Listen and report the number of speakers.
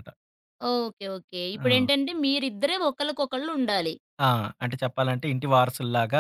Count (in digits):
2